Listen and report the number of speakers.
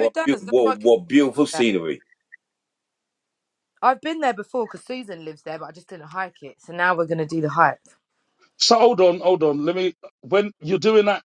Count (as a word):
three